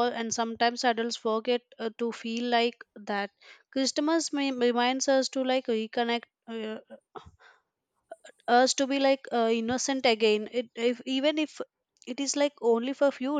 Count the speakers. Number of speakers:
one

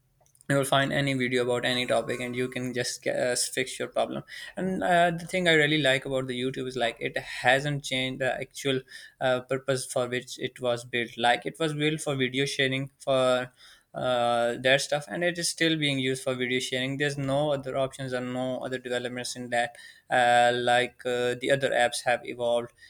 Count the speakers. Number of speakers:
one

